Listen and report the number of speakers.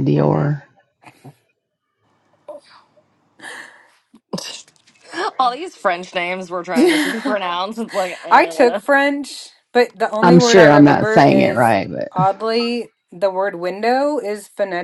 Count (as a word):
three